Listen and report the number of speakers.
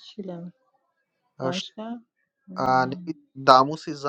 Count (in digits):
2